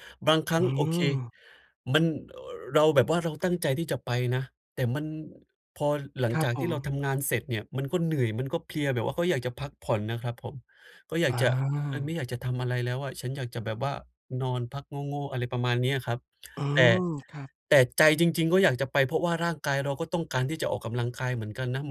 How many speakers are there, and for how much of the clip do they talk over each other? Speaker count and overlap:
2, about 6%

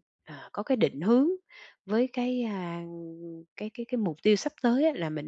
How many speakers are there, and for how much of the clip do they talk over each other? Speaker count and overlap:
1, no overlap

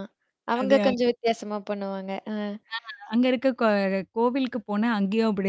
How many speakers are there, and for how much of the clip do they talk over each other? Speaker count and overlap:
2, about 8%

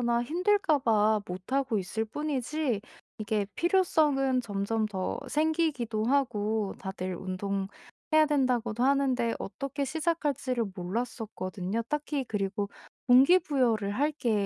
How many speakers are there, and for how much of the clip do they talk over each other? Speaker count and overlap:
1, no overlap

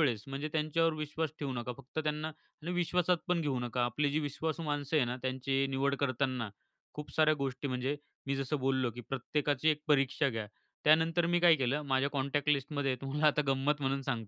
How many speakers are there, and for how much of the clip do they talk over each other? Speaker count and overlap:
1, no overlap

